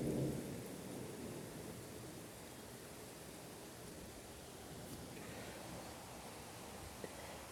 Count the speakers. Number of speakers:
0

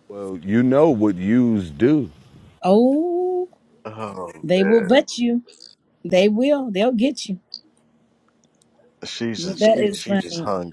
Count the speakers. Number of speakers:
3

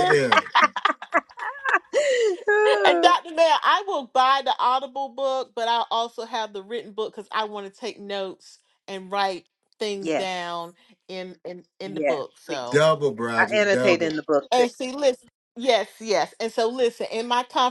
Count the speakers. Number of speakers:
3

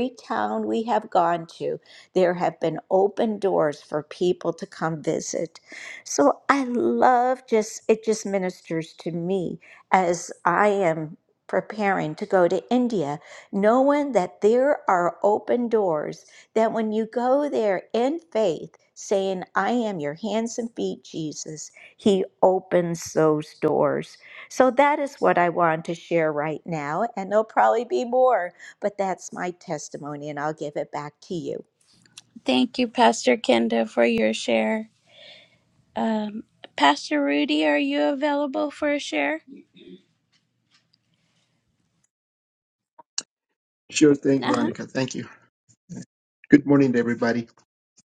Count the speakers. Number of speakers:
3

